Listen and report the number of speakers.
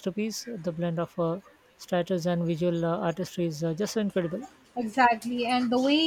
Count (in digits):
2